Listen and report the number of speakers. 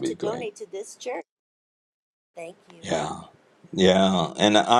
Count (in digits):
2